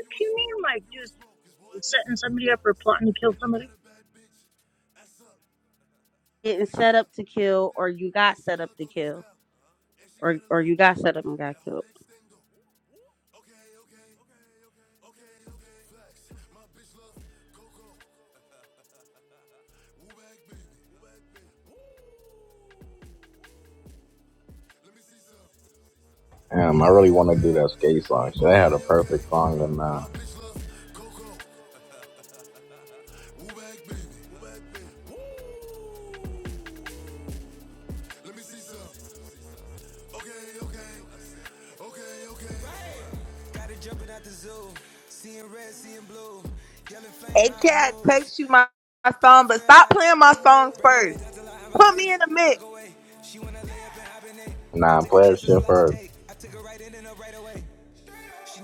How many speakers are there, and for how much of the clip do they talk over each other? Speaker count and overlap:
four, no overlap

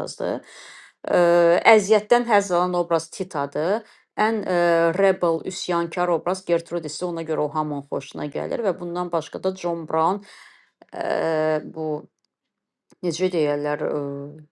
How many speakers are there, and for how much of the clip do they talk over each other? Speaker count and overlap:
one, no overlap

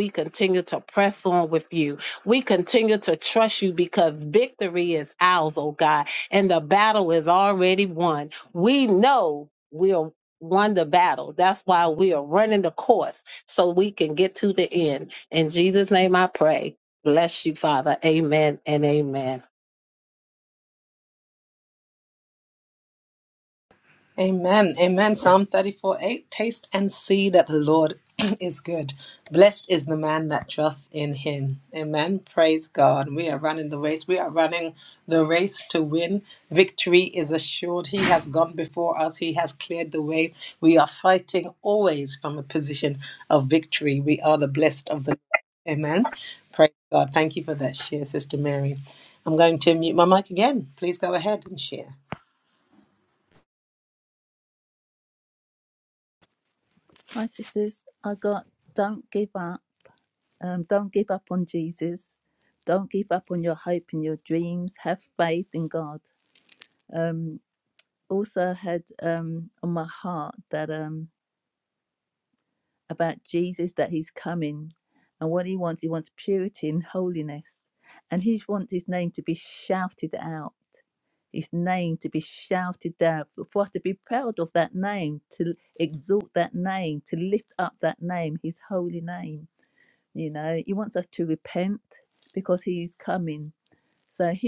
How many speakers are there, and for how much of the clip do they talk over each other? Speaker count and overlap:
three, no overlap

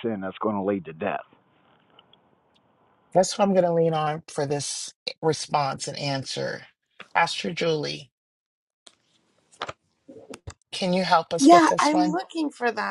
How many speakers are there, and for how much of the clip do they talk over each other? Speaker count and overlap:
three, about 6%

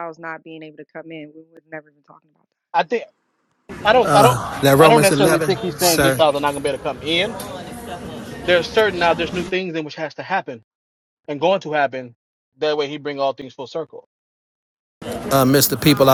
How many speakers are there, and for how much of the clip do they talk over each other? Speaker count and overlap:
three, about 11%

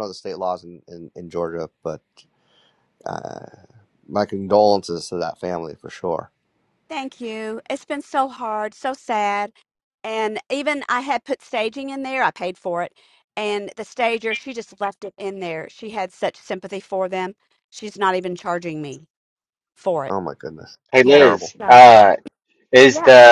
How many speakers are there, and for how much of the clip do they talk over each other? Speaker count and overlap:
three, about 4%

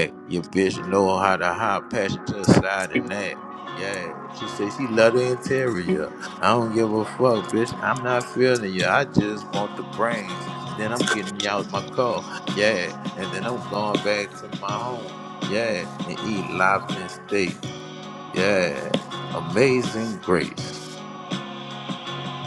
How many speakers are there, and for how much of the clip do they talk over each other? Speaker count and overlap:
one, no overlap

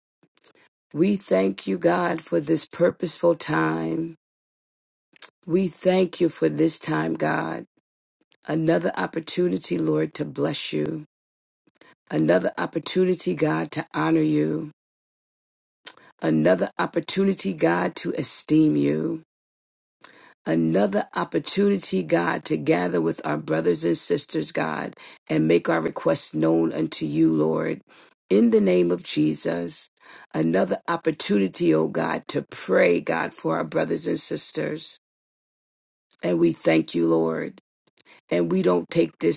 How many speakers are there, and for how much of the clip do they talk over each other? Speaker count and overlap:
one, no overlap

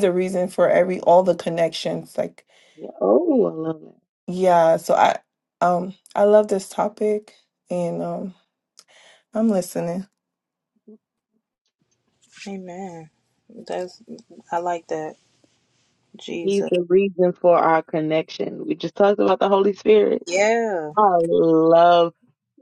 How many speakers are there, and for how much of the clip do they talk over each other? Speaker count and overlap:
three, about 1%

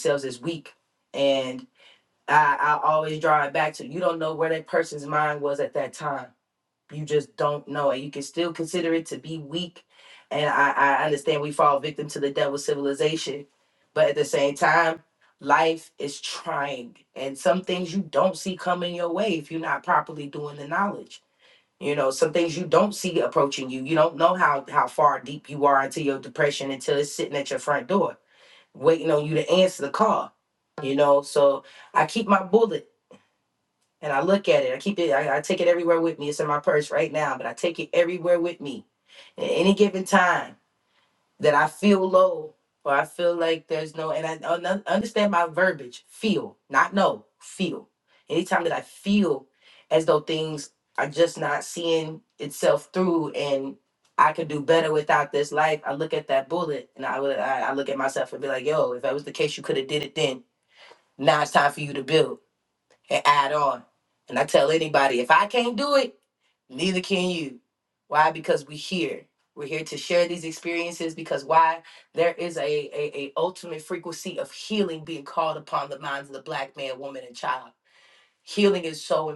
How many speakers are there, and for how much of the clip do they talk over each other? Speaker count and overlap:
one, no overlap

